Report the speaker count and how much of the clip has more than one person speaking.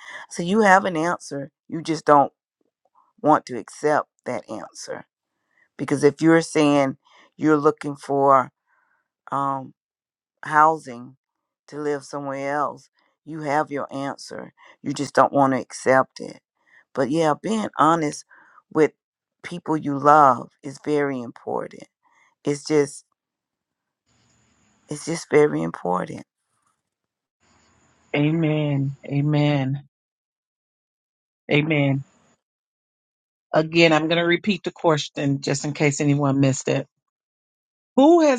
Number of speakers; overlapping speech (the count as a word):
two, no overlap